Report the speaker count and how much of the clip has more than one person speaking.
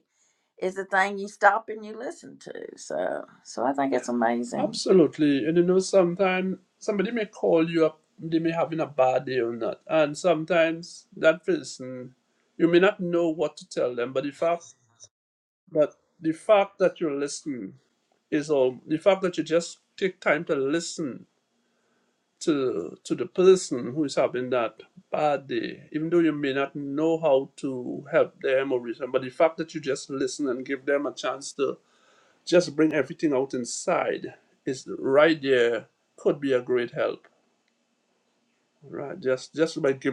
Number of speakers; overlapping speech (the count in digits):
2, under 1%